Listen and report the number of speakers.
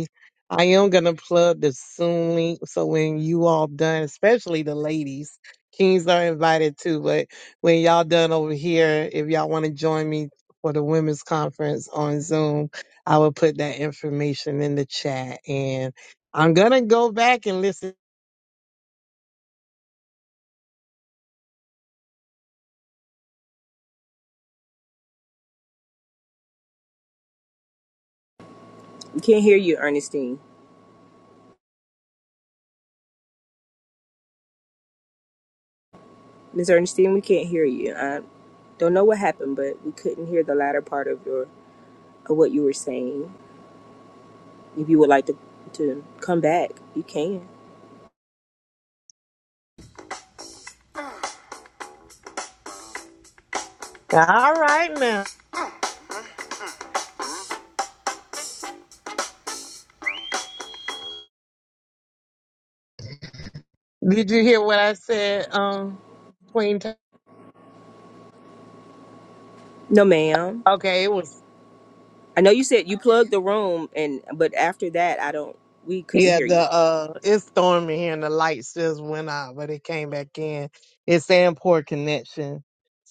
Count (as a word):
two